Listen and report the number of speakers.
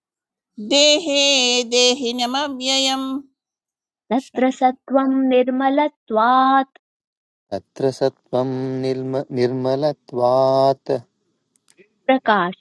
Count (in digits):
3